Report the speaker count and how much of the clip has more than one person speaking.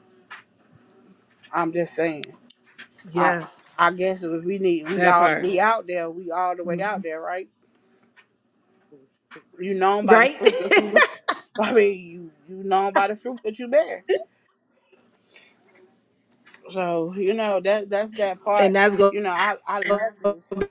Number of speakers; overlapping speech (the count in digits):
2, about 7%